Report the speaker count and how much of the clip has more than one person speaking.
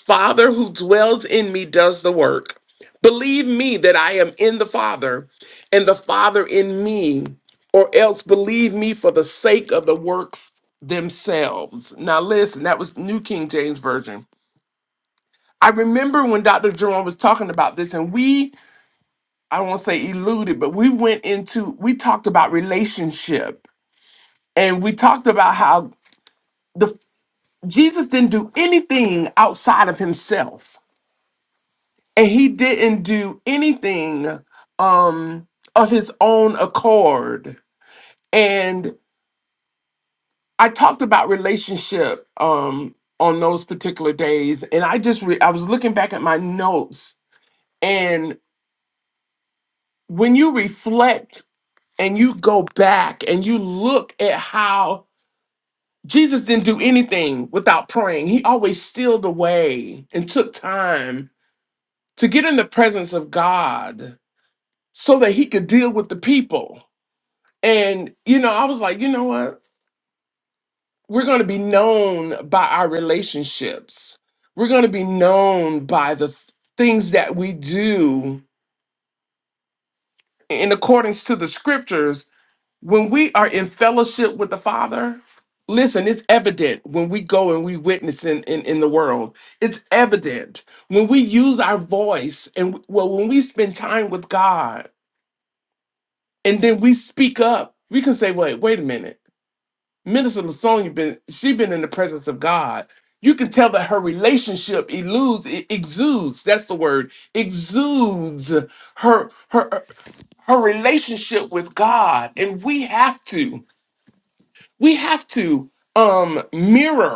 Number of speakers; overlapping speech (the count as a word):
one, no overlap